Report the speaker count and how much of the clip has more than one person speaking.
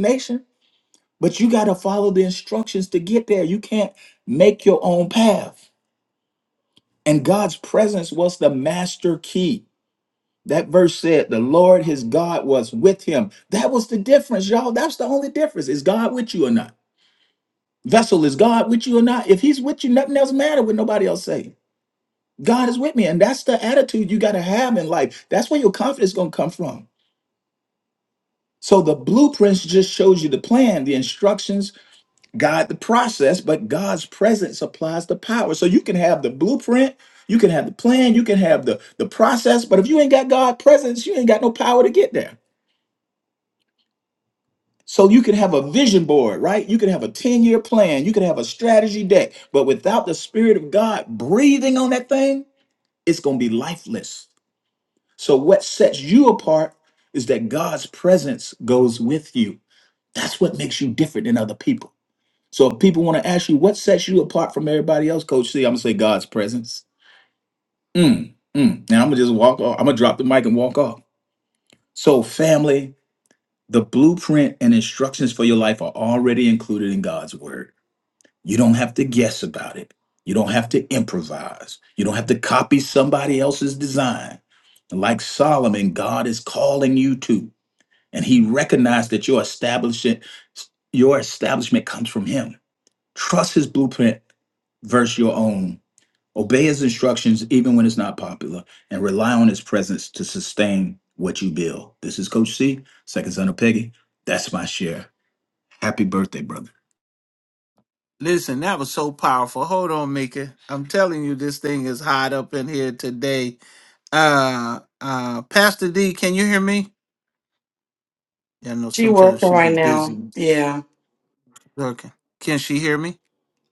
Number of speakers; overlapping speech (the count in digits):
3, about 1%